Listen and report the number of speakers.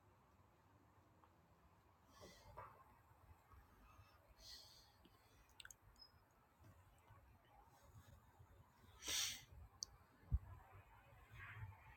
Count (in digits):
0